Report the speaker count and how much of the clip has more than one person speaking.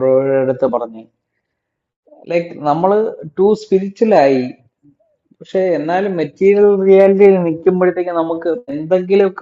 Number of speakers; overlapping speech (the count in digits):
1, no overlap